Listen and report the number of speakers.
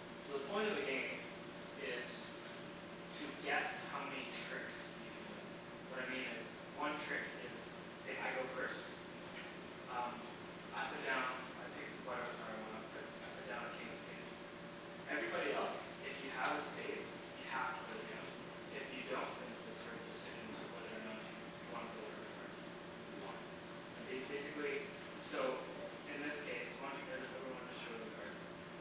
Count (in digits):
1